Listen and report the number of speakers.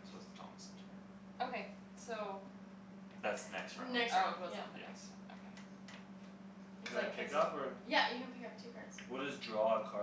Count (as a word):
four